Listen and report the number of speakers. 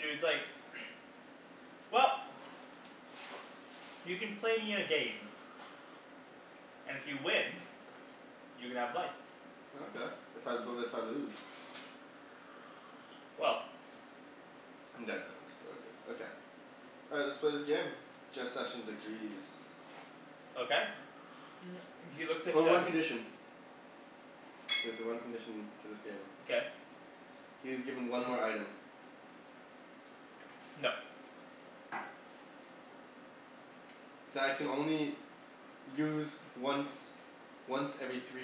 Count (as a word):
two